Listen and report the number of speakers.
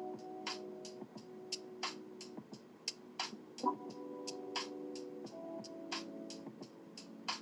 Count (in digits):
0